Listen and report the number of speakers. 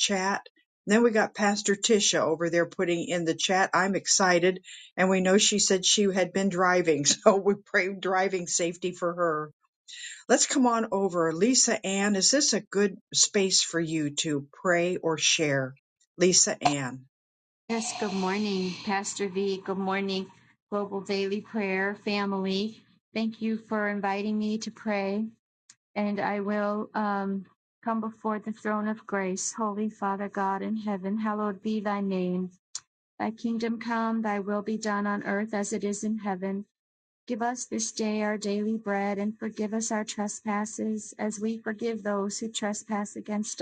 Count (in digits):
2